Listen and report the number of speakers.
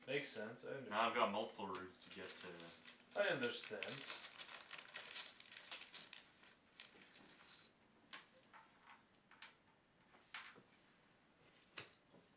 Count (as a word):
two